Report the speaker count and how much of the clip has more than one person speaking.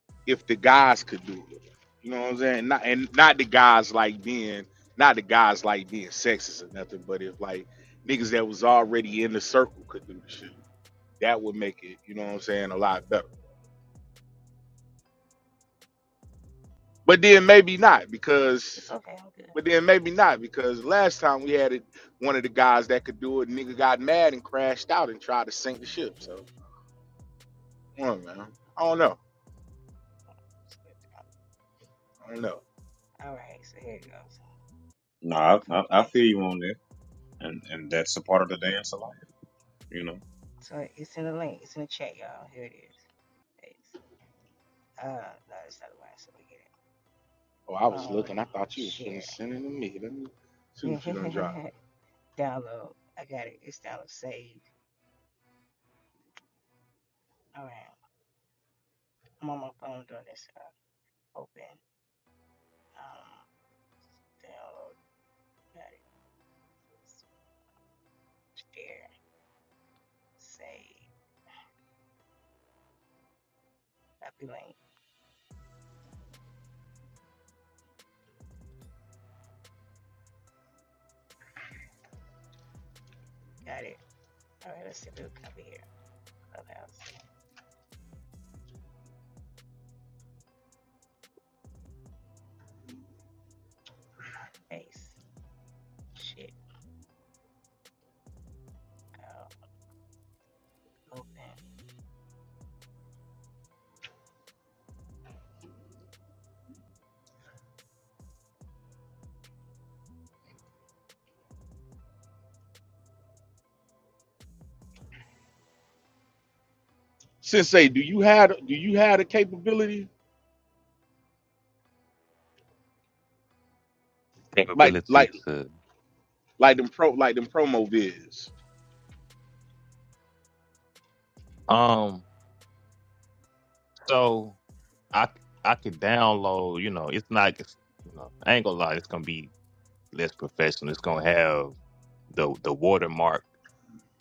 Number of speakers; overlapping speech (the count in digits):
4, about 2%